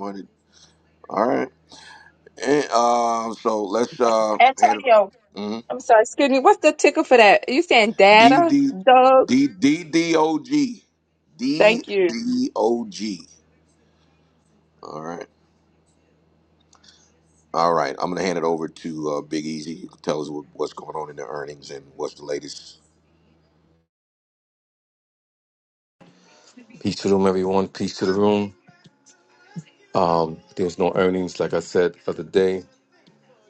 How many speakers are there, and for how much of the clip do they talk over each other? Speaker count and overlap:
3, about 4%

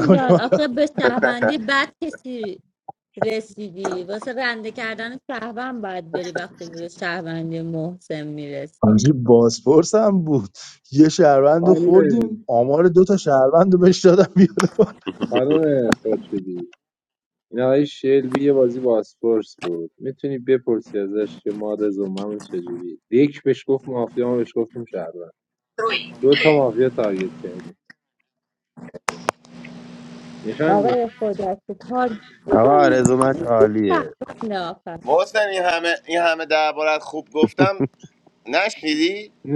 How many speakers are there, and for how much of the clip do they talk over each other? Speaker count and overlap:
5, about 6%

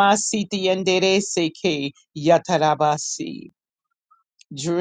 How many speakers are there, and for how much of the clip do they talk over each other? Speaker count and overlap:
1, no overlap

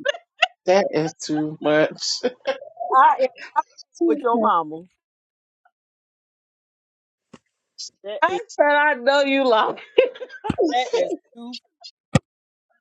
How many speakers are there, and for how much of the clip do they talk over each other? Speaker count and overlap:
3, about 2%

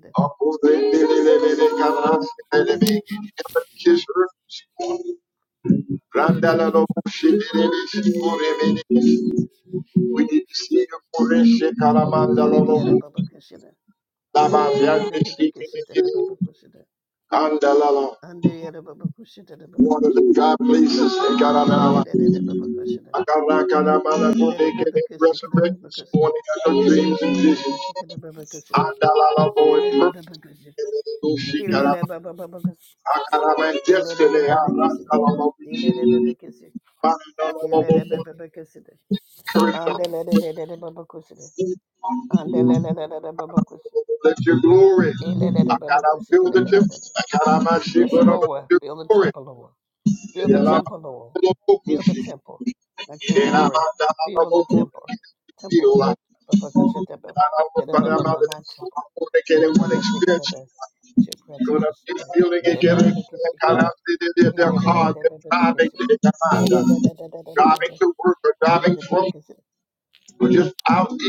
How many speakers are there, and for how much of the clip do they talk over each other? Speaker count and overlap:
2, about 28%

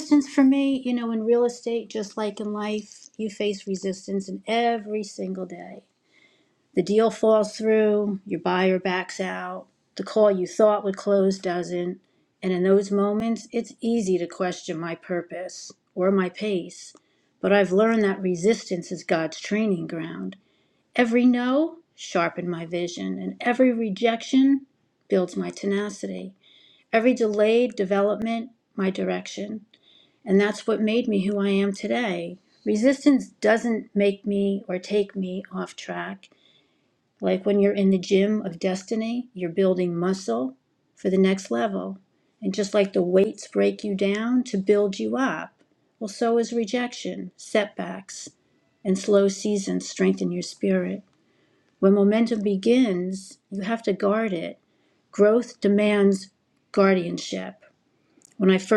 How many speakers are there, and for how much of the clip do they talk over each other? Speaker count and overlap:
1, no overlap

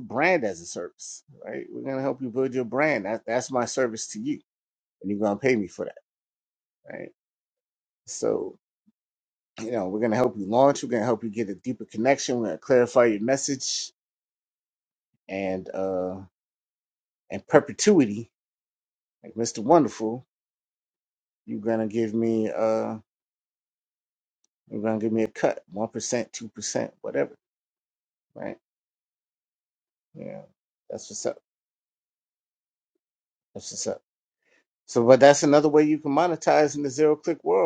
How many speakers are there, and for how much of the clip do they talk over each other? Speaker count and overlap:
1, no overlap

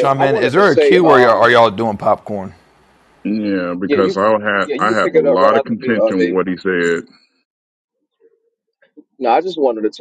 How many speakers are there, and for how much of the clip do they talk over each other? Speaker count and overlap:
3, about 34%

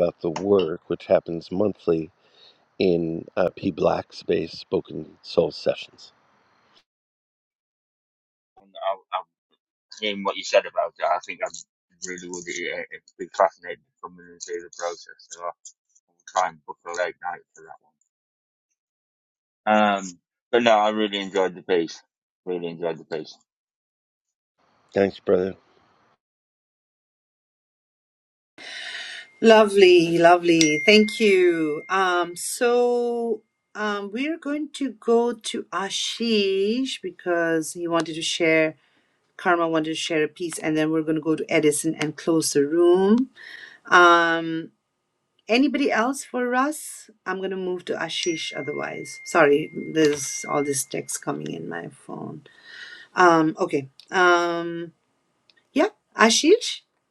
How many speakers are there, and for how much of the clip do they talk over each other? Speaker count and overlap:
3, no overlap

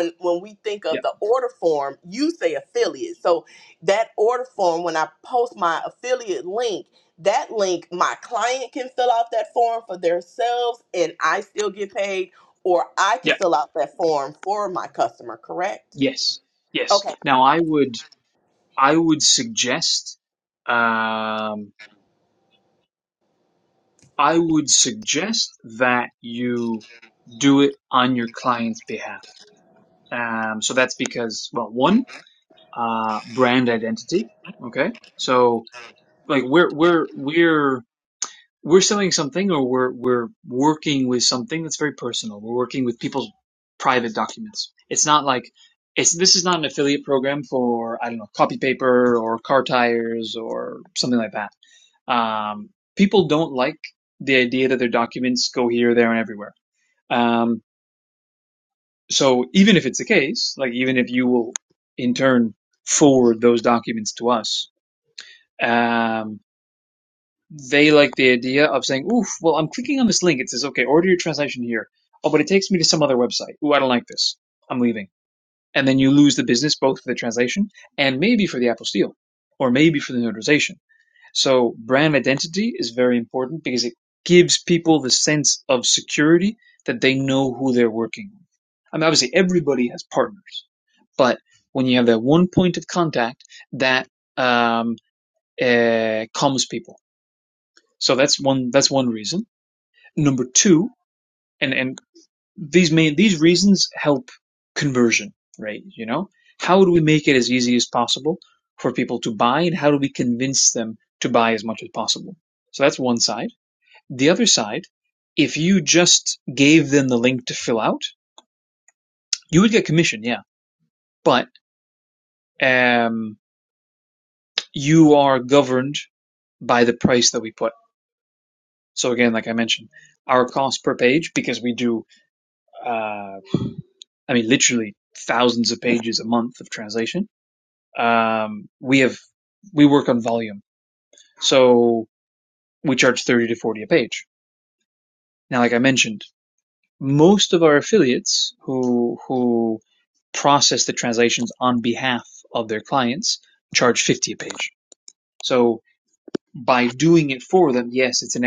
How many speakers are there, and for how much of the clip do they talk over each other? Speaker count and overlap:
2, under 1%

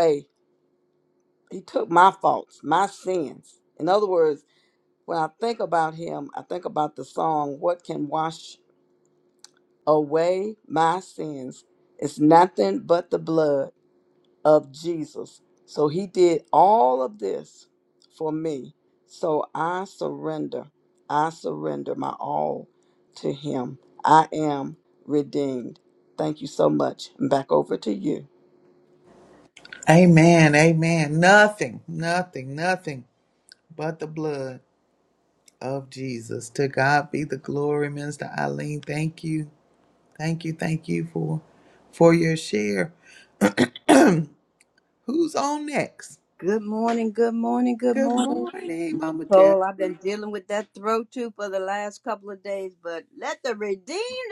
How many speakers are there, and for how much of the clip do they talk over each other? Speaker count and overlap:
3, about 1%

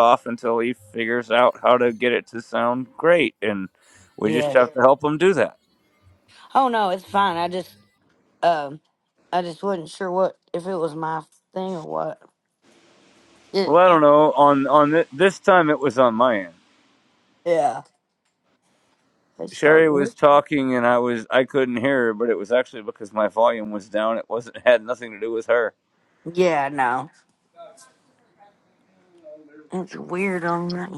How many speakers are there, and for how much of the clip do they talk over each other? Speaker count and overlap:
2, about 3%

